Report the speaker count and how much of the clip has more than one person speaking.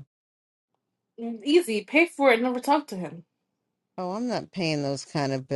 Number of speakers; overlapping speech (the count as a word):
two, no overlap